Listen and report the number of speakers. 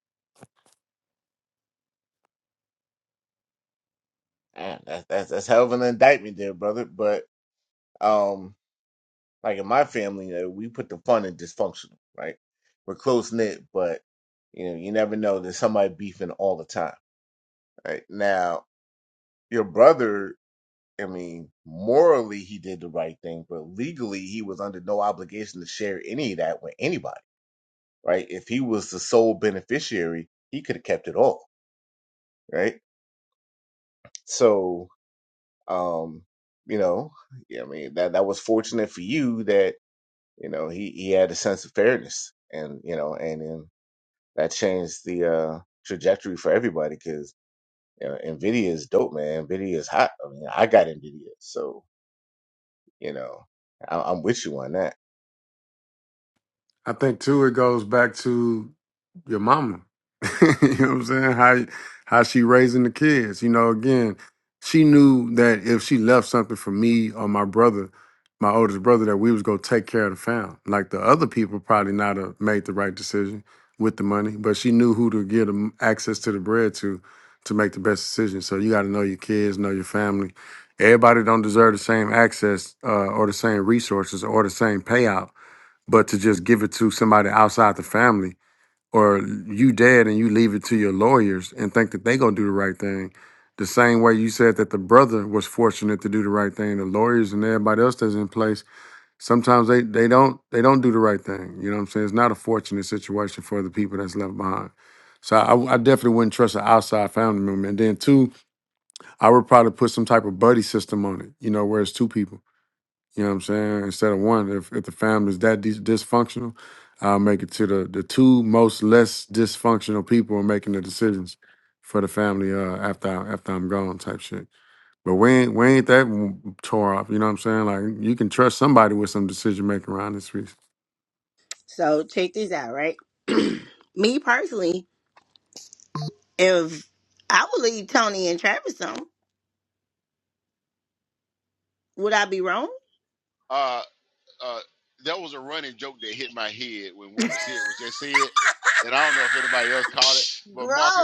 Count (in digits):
4